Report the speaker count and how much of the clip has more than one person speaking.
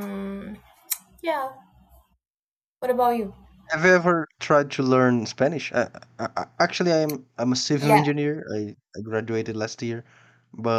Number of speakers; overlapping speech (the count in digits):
2, about 2%